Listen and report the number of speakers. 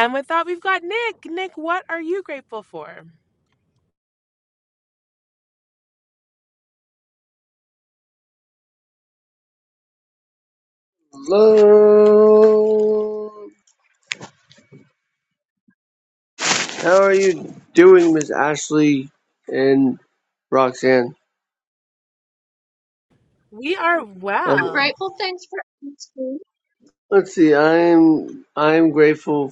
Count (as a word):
three